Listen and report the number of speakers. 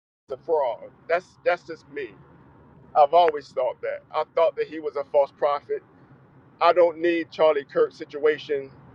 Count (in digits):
1